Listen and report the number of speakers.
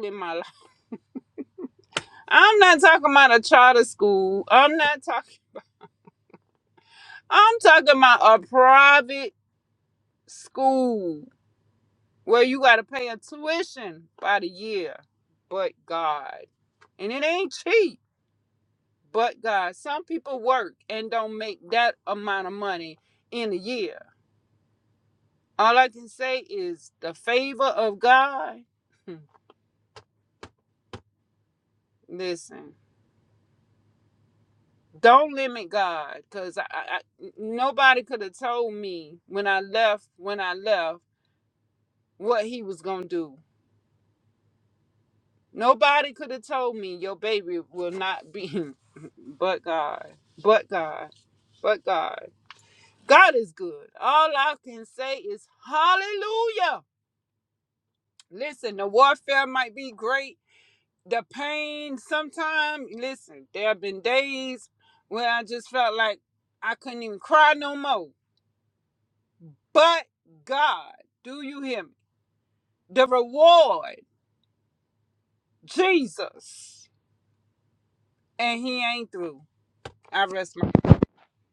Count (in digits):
1